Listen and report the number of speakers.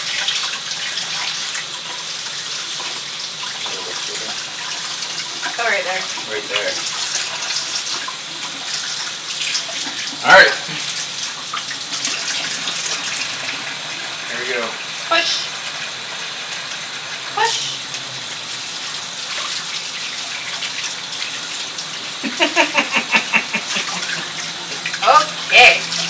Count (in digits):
2